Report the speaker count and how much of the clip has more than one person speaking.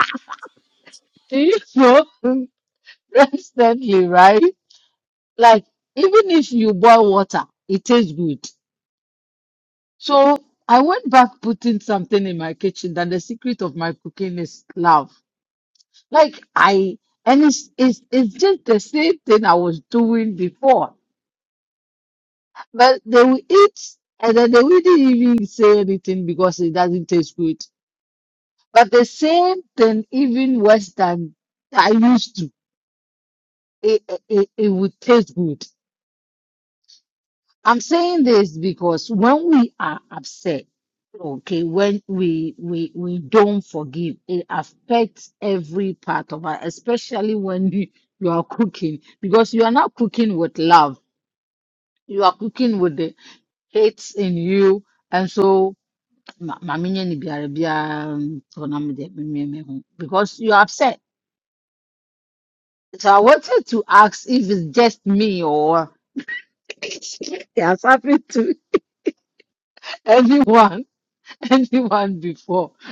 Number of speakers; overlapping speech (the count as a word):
one, no overlap